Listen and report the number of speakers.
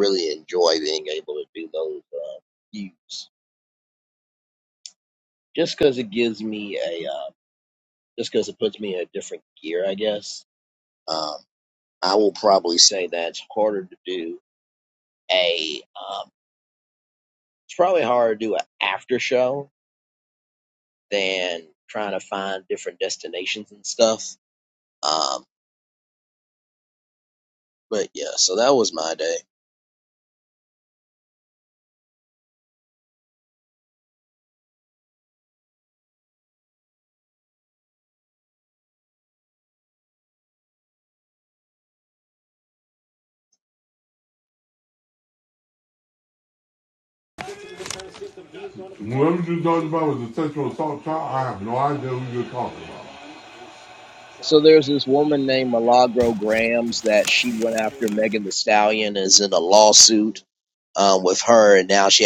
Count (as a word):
two